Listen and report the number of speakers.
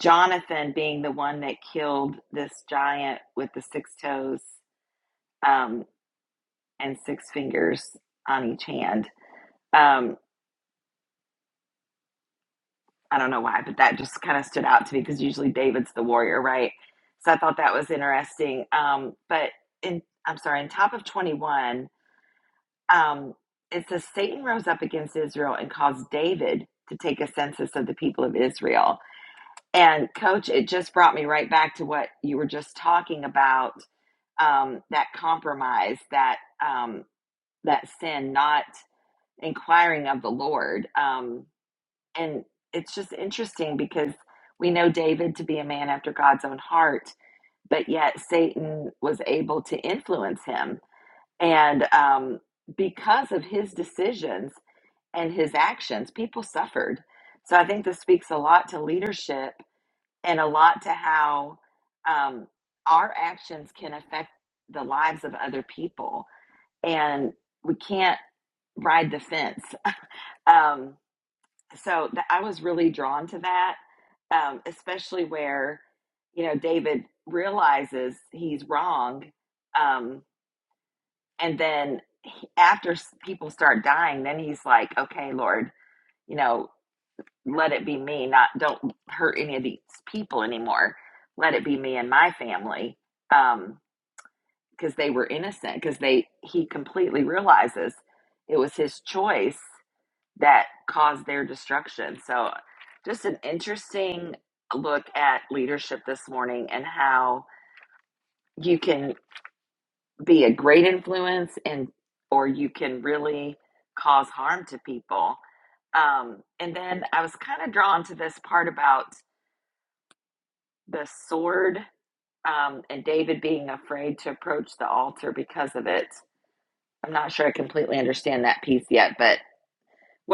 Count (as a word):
one